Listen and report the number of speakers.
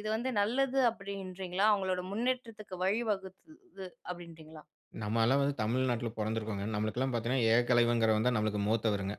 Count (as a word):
two